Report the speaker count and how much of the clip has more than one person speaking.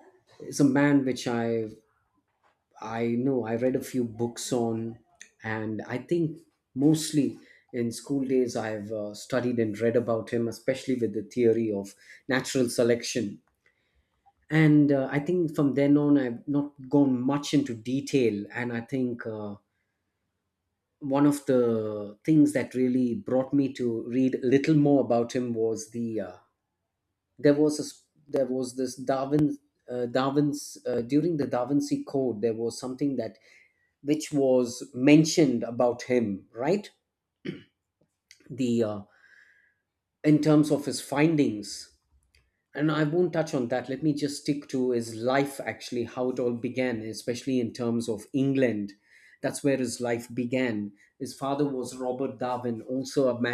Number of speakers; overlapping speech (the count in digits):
1, no overlap